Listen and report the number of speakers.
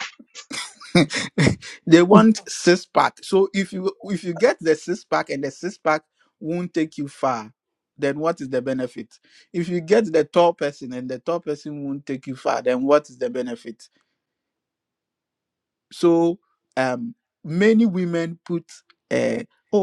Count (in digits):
1